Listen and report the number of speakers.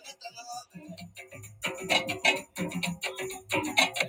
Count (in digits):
0